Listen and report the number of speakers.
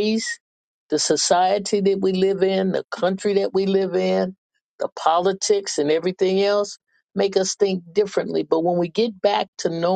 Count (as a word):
one